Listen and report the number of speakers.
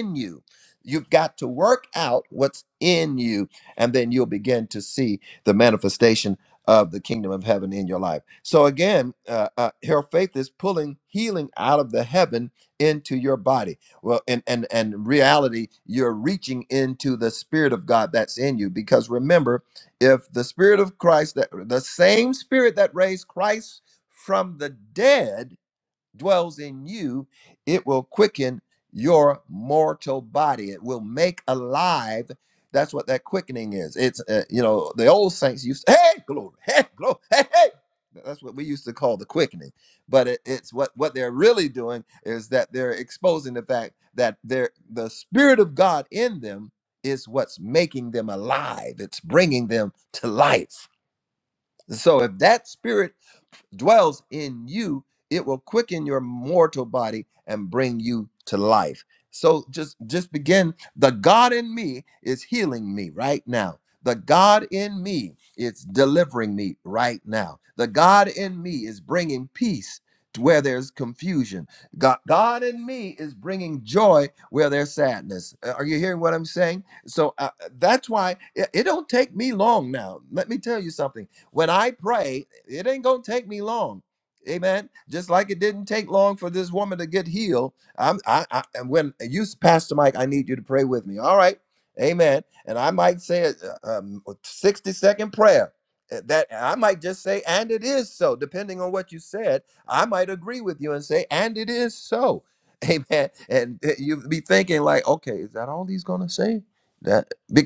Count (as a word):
one